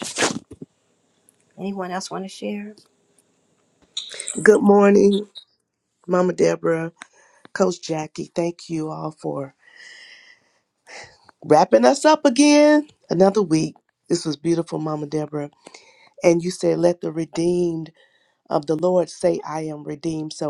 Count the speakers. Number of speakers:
2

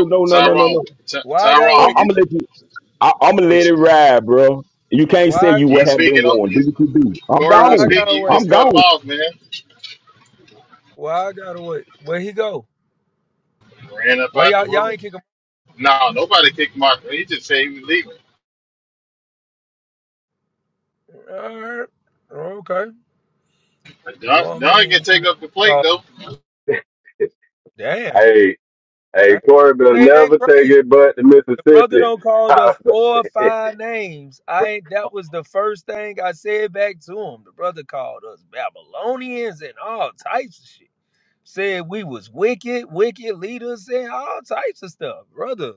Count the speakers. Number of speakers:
4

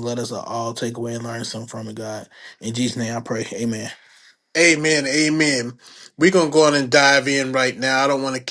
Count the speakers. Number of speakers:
2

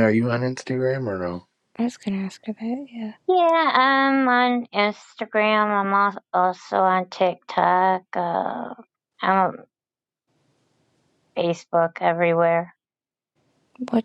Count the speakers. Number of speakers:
3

